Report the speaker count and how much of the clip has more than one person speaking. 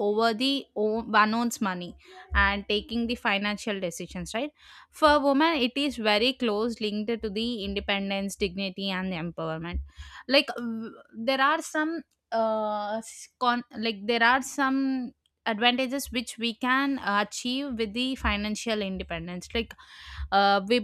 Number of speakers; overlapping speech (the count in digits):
1, no overlap